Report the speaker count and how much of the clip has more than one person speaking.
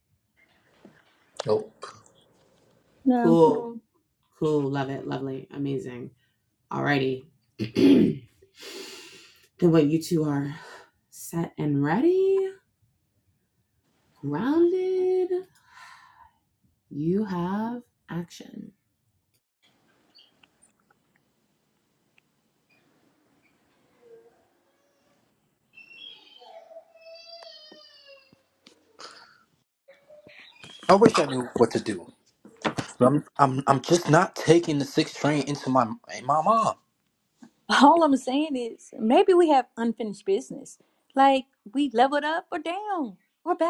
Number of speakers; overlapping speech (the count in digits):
3, under 1%